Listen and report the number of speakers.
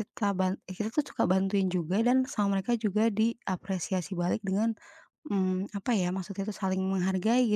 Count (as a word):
one